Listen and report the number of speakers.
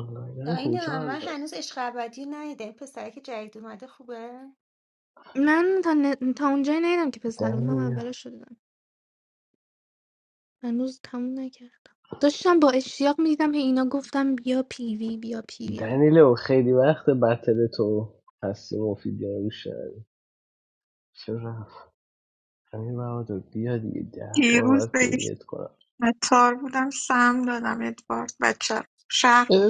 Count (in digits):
4